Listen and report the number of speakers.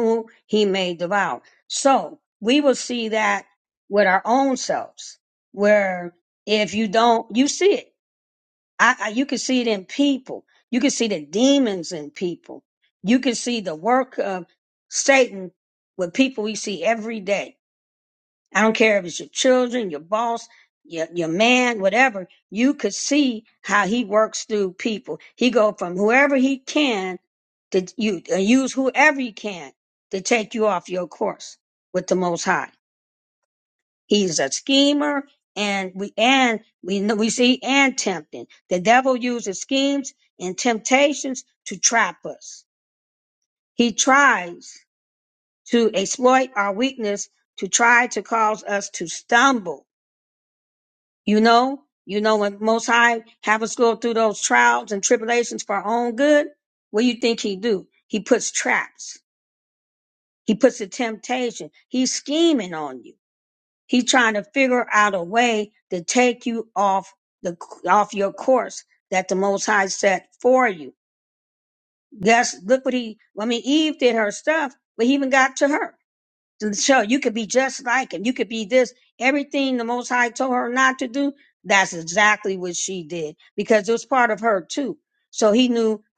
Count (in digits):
1